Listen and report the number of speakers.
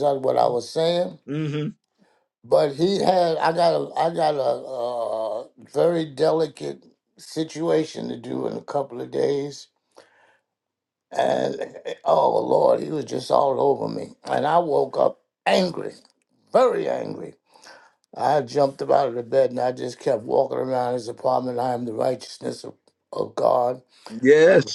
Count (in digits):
2